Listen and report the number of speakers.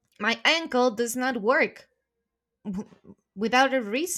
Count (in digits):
1